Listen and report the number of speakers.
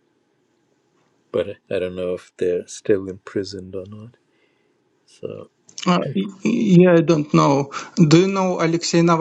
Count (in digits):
2